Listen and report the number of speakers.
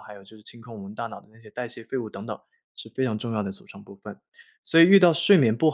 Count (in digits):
1